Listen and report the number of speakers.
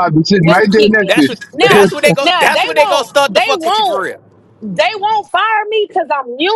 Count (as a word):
three